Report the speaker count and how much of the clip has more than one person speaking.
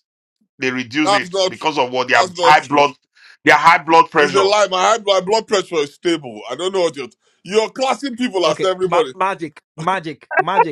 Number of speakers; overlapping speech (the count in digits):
3, about 22%